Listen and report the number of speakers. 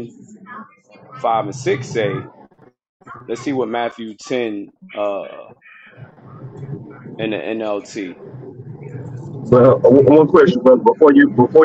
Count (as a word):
two